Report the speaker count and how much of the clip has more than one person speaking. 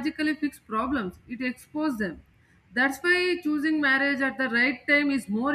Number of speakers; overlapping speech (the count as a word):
one, no overlap